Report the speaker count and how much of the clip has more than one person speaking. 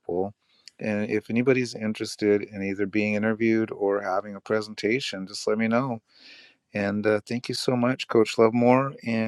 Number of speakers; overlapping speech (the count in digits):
1, no overlap